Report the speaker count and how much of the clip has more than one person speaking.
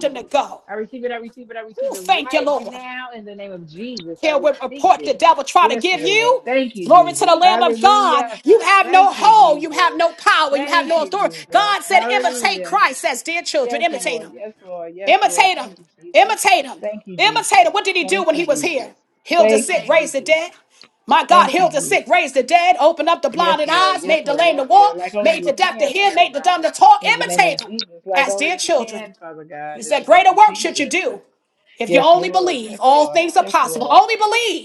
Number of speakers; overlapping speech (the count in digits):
2, about 60%